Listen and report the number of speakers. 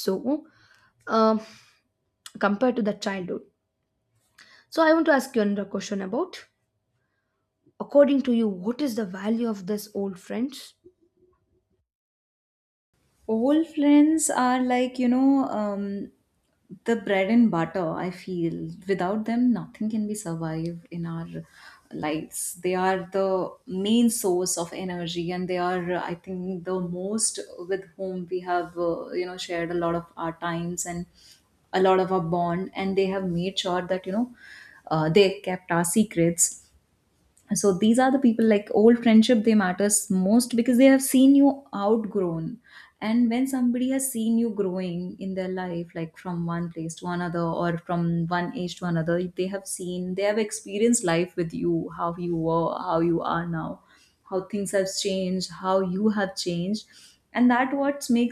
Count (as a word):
two